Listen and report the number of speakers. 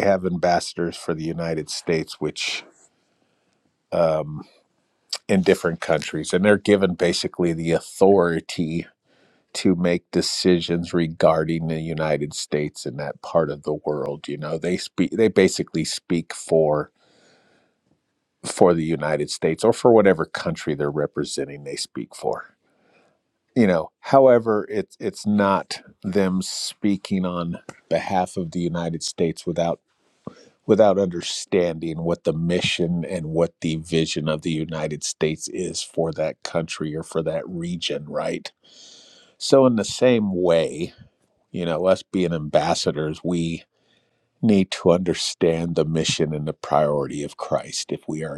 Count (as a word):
one